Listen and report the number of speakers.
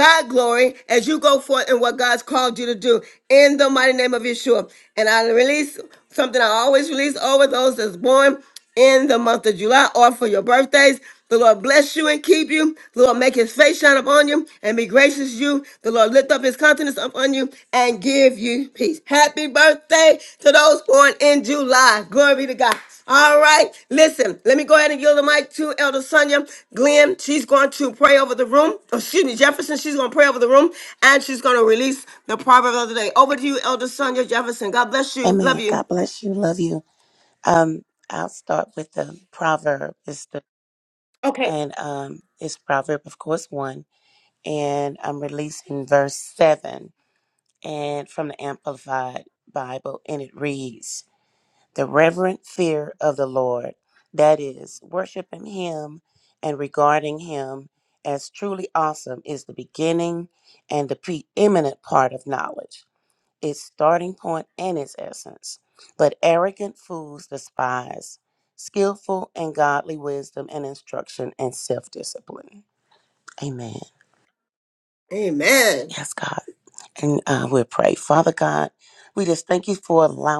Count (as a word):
two